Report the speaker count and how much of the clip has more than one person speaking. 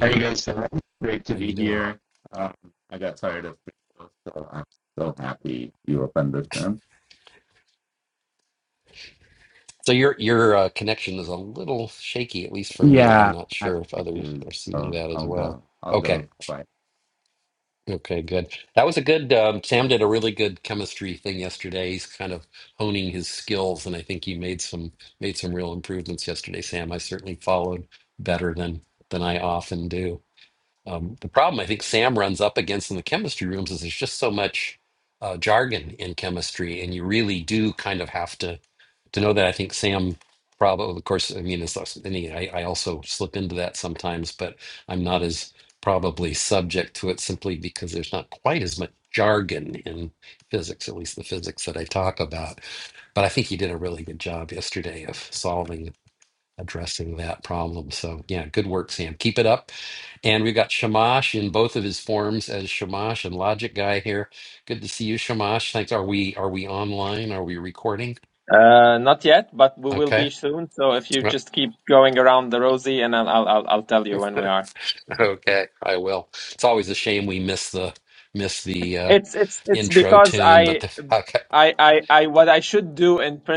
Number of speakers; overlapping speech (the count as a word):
three, about 7%